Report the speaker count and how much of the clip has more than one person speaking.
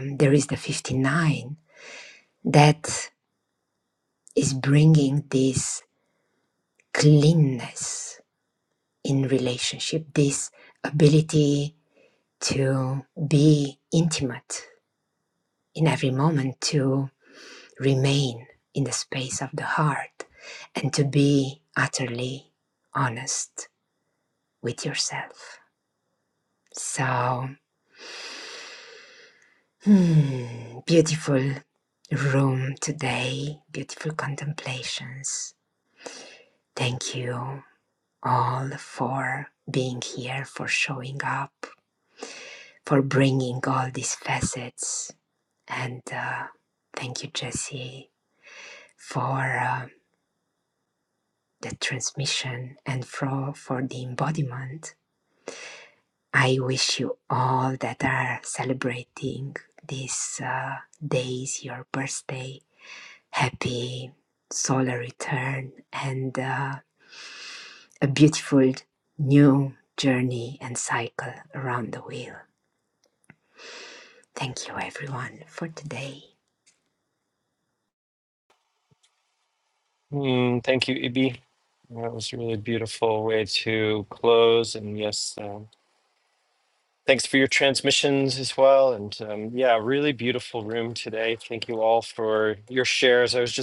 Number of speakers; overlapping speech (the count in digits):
2, no overlap